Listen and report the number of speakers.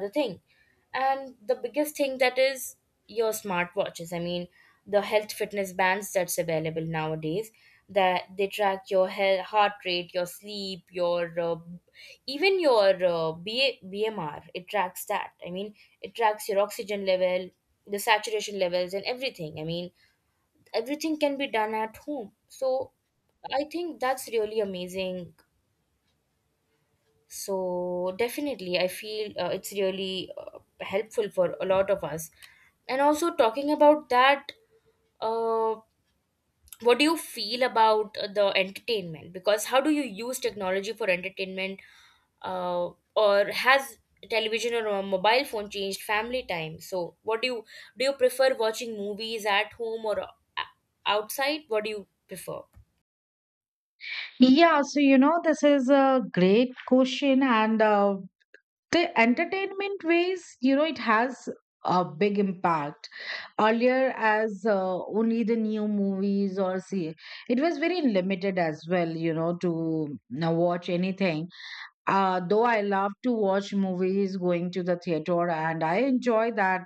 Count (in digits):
2